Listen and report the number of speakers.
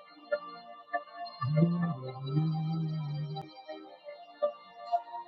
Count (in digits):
0